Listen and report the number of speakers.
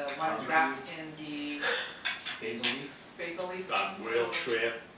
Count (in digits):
3